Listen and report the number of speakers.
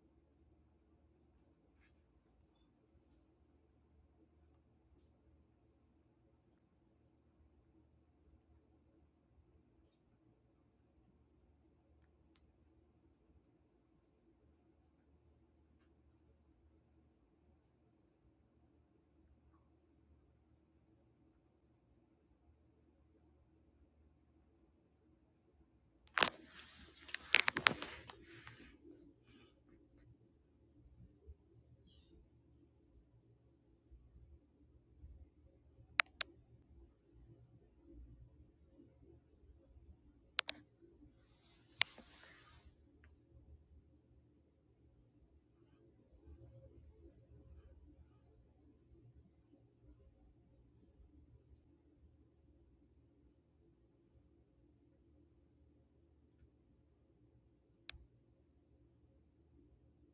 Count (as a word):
zero